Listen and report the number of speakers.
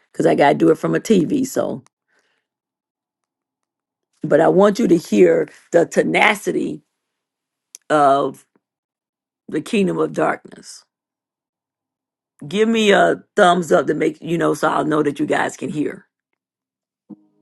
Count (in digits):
1